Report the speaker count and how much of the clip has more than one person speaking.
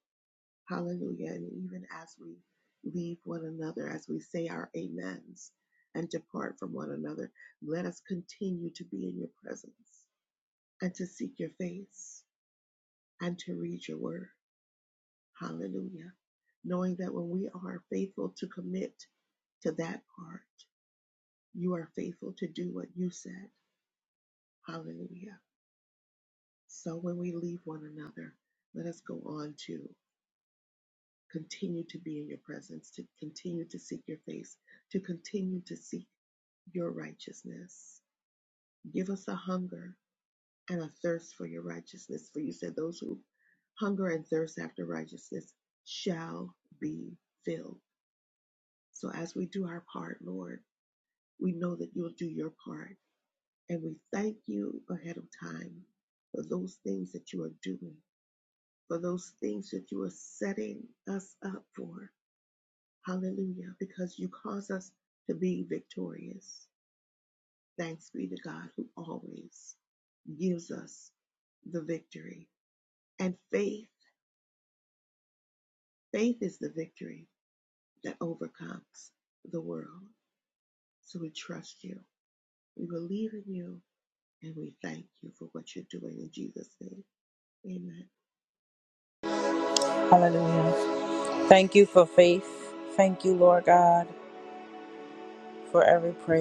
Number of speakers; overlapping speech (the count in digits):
2, no overlap